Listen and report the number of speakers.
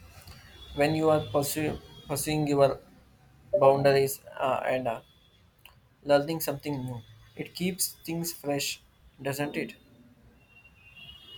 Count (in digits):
1